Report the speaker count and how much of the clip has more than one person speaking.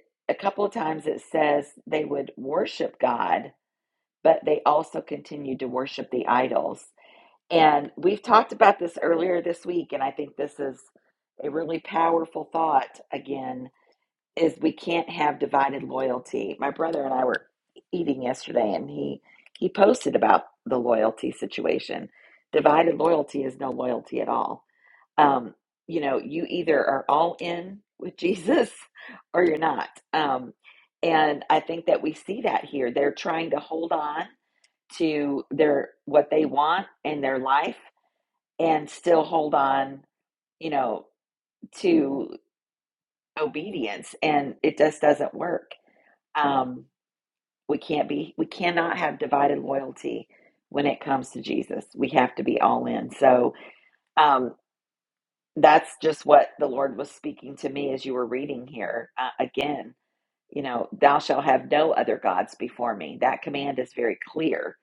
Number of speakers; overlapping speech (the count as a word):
one, no overlap